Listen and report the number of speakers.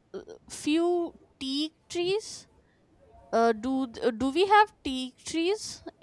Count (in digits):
1